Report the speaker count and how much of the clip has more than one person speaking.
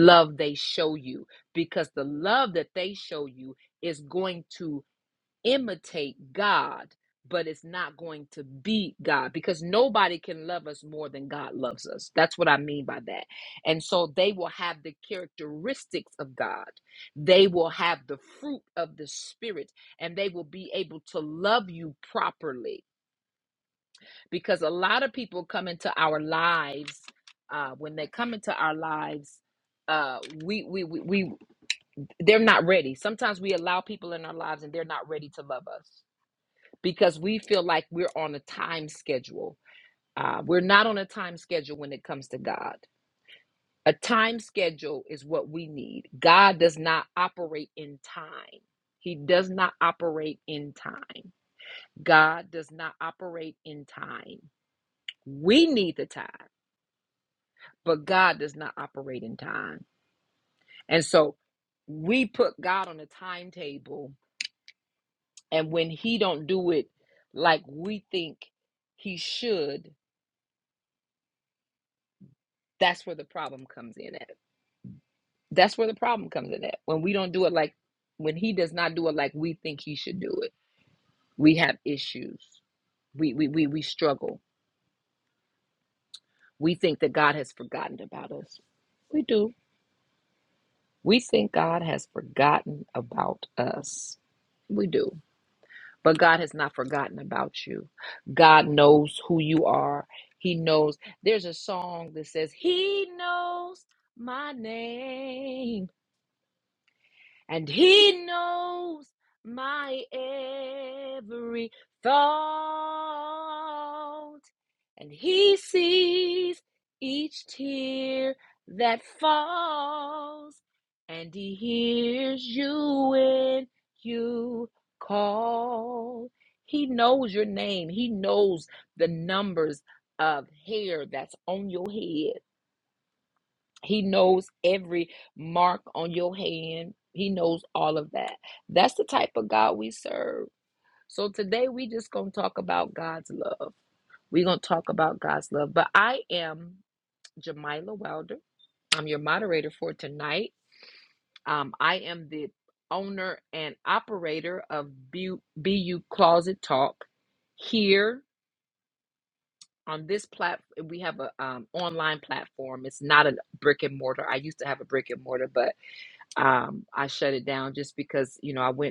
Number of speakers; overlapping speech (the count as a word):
one, no overlap